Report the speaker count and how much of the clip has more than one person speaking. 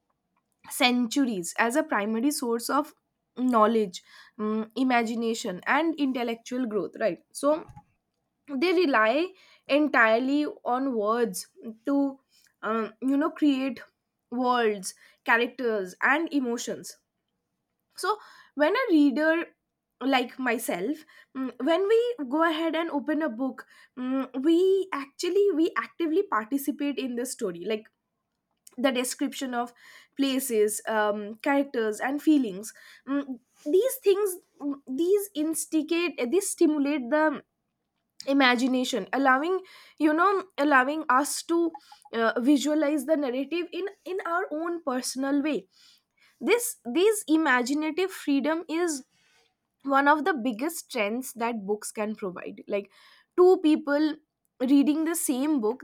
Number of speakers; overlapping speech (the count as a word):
one, no overlap